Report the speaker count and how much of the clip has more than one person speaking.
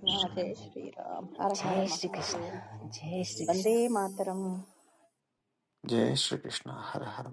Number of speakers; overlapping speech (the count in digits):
3, about 17%